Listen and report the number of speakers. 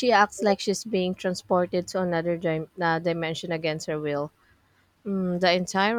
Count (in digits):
1